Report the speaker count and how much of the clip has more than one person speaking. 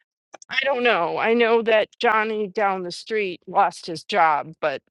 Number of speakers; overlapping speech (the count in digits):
1, no overlap